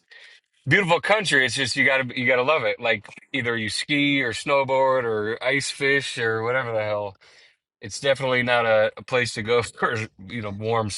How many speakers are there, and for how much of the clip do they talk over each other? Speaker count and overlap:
1, no overlap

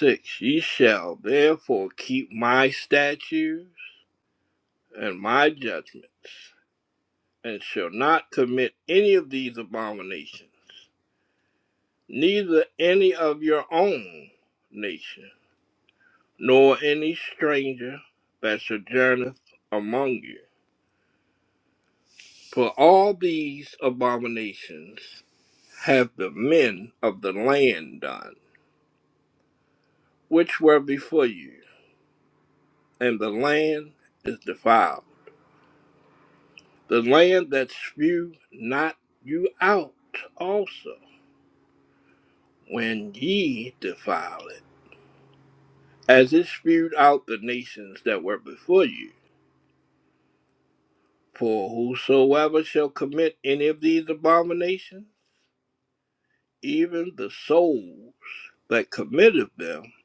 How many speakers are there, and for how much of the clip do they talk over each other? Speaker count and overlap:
1, no overlap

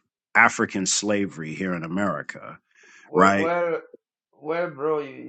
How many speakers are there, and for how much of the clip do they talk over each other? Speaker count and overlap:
2, about 6%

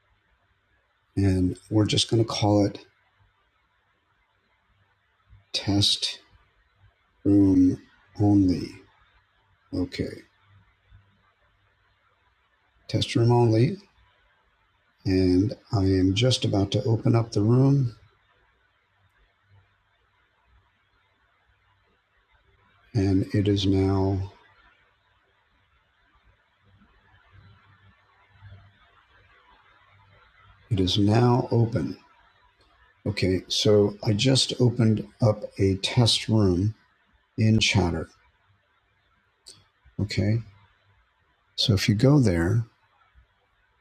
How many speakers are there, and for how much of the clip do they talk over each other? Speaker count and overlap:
1, no overlap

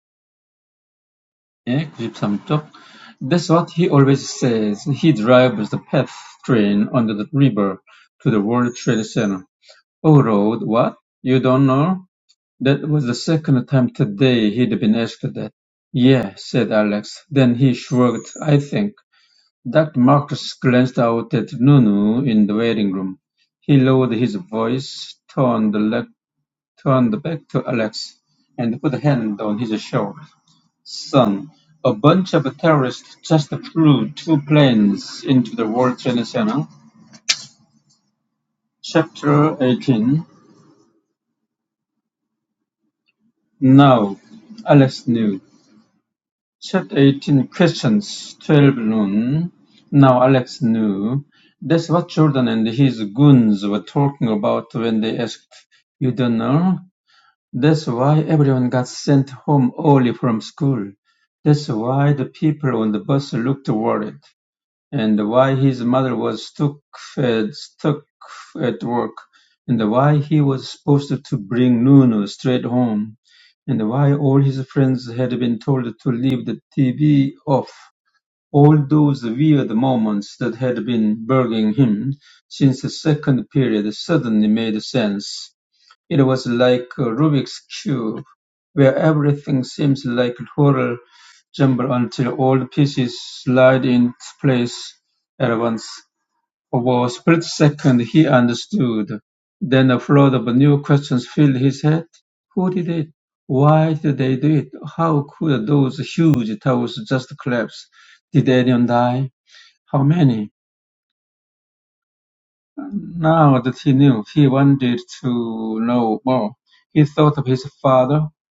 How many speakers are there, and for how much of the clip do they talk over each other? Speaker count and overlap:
1, no overlap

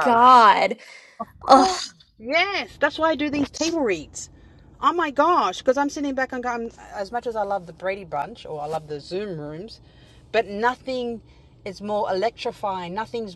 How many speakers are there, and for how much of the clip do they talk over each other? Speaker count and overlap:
2, about 2%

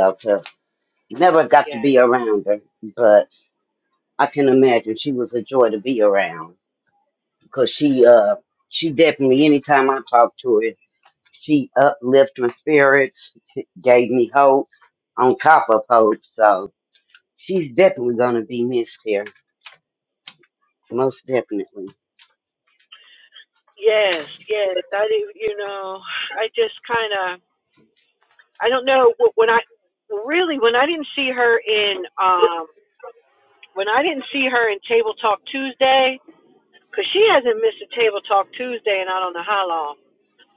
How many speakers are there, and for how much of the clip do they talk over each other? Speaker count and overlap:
2, about 1%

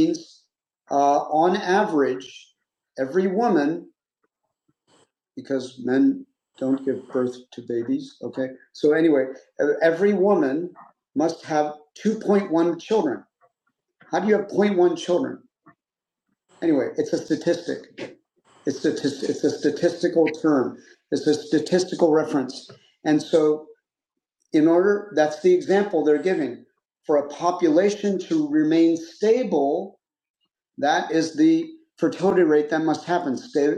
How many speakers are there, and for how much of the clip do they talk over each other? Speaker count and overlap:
1, no overlap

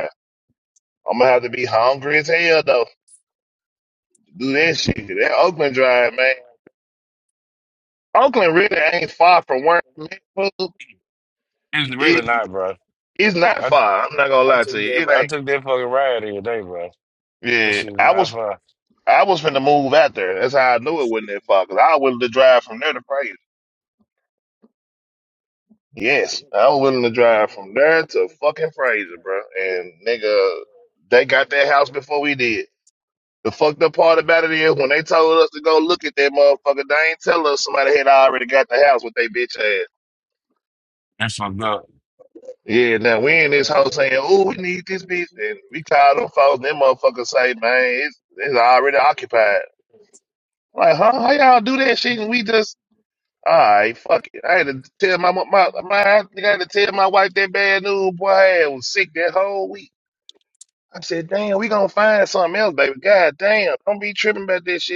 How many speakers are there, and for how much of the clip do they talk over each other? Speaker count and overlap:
2, about 3%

